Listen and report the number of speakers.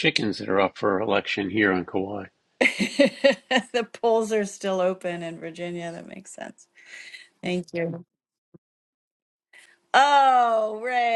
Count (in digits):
2